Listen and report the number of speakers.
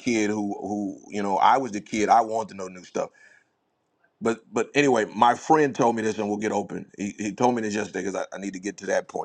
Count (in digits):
1